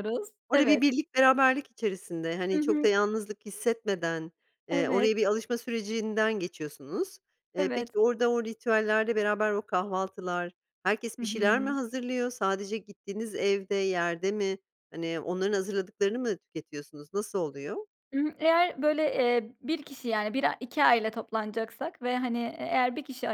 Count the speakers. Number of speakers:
2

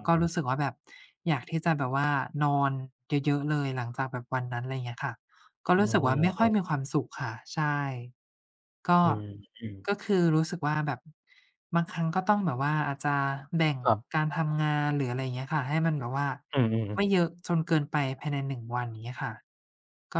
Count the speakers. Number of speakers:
2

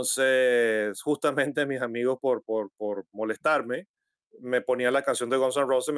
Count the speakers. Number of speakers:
1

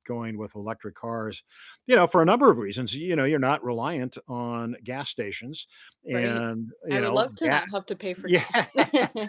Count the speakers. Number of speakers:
2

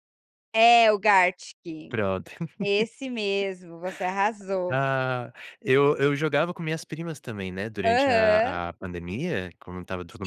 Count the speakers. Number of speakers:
2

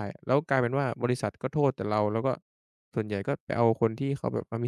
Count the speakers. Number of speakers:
1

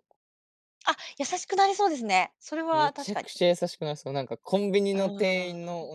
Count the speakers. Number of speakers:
2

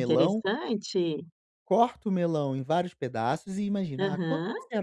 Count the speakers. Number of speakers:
2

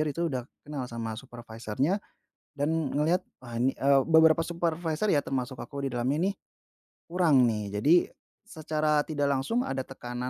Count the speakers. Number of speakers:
1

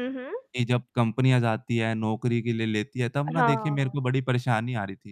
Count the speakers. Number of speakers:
2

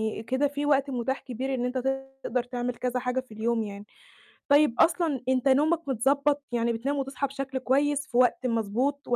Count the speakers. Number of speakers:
1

